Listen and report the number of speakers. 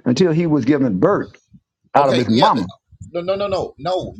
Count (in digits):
2